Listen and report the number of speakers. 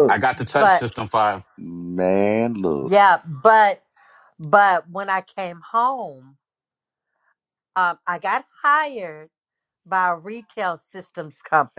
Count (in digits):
3